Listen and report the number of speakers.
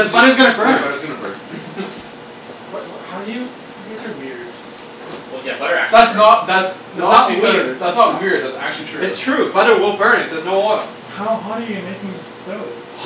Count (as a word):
three